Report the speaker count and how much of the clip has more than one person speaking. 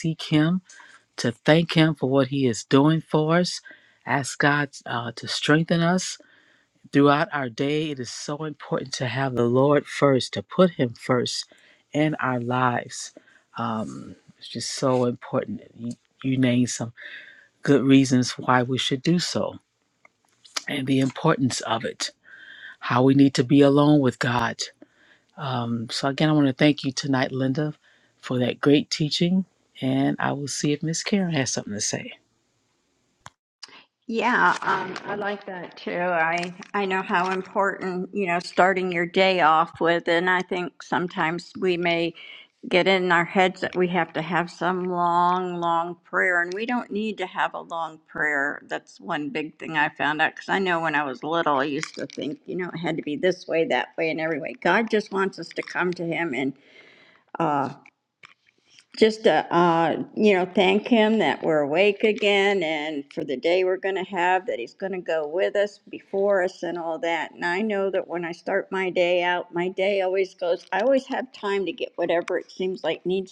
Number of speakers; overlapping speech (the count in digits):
2, no overlap